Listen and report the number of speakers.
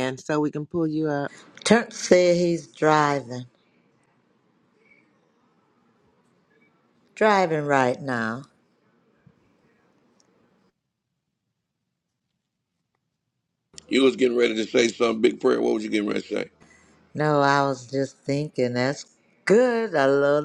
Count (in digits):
3